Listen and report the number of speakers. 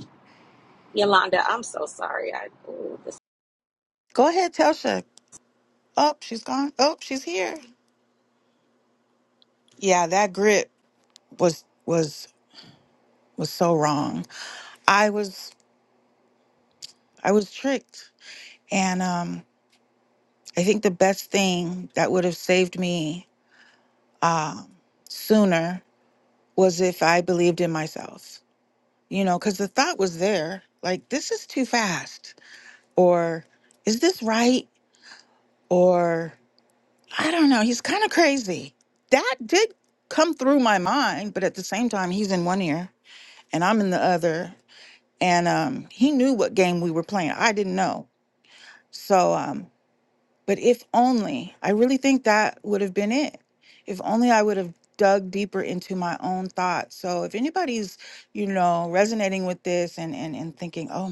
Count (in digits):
2